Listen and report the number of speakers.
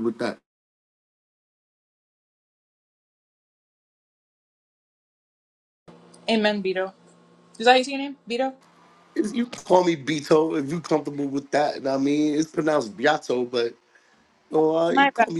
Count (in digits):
2